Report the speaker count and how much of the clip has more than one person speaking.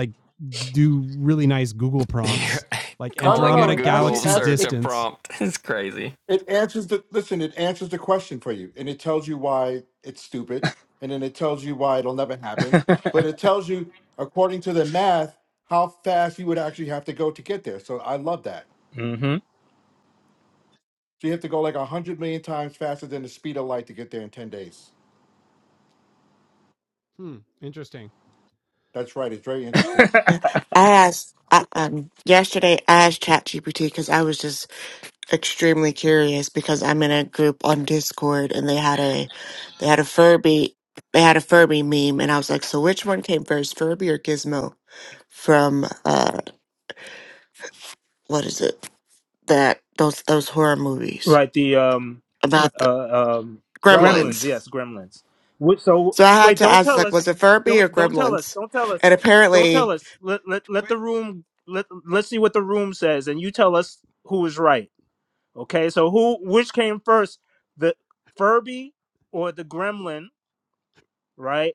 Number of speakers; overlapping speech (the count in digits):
5, about 7%